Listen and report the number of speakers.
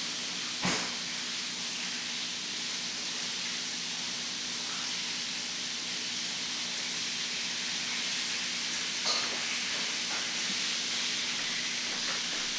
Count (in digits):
0